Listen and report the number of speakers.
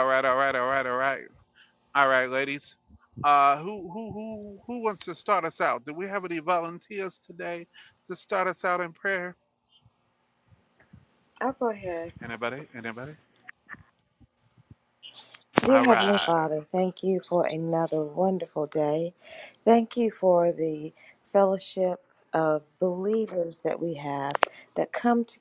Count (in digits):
2